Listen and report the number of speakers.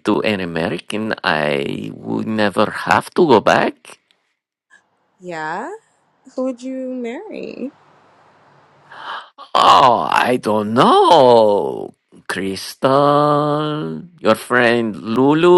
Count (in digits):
2